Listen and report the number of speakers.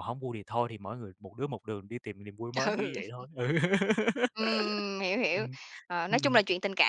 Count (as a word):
two